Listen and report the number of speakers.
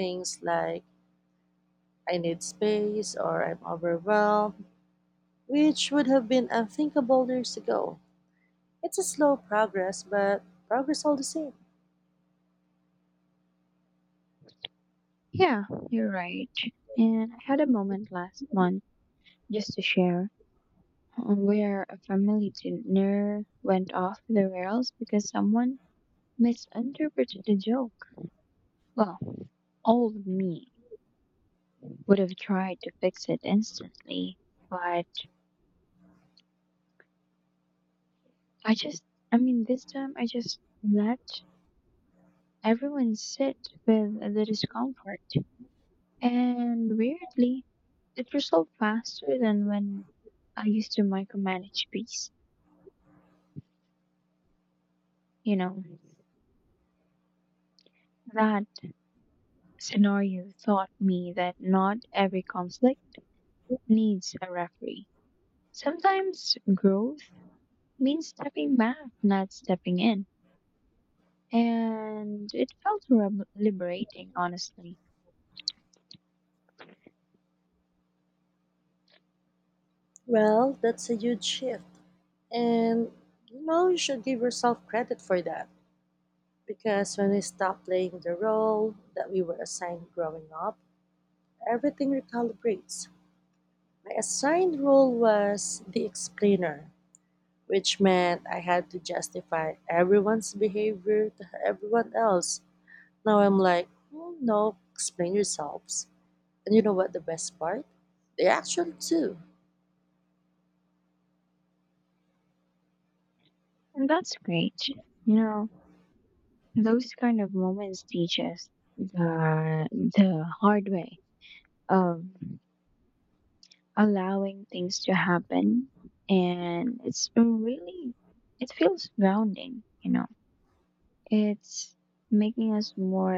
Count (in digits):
2